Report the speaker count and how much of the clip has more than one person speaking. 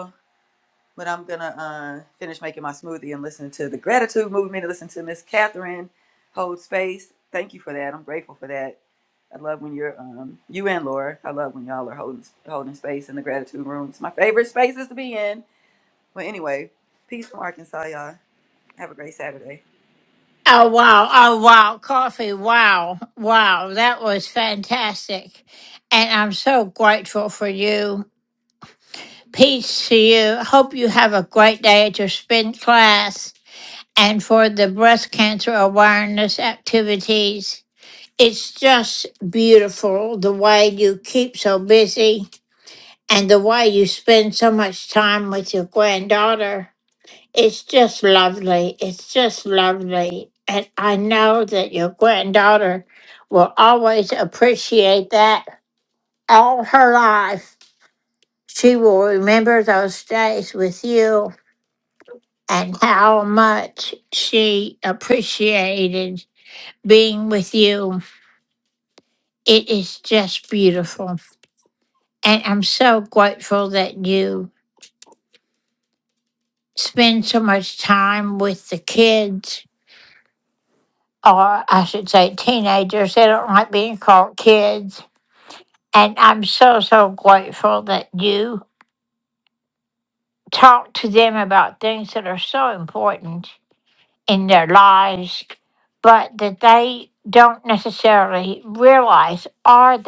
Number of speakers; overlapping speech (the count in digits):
2, no overlap